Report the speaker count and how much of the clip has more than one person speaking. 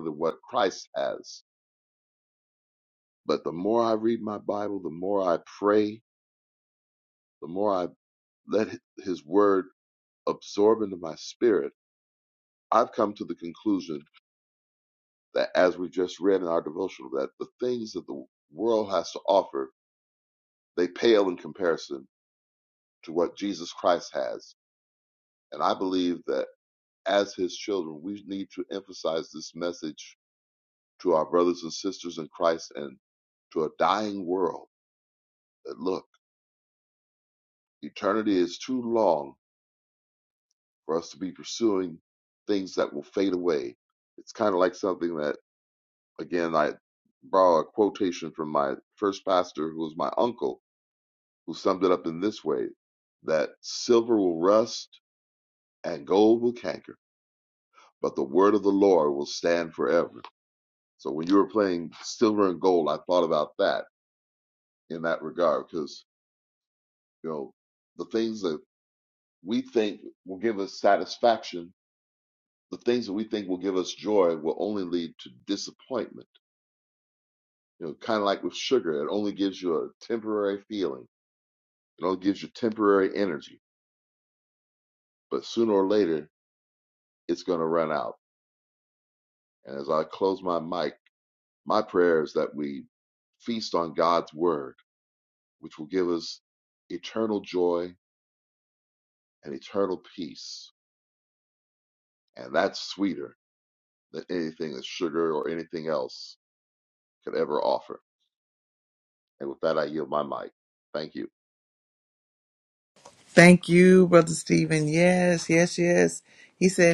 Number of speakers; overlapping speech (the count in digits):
2, no overlap